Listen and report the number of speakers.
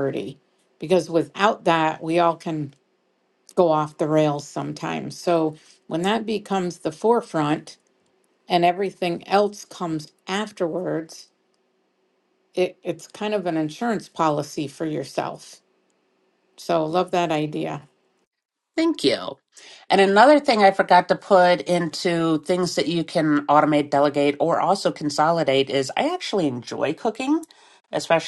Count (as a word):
two